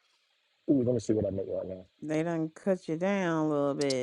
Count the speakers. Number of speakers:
2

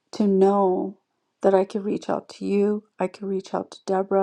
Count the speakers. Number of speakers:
1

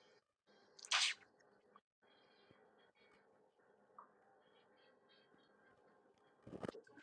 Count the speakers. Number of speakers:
0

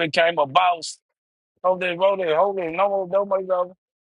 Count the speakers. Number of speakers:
1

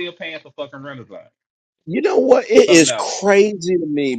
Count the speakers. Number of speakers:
2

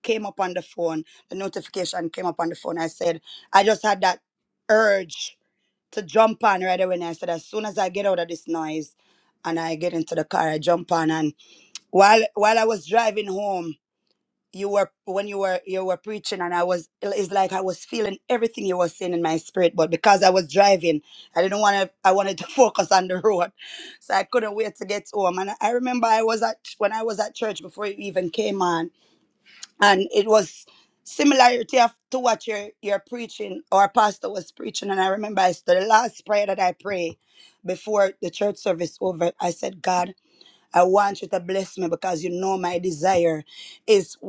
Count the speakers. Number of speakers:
1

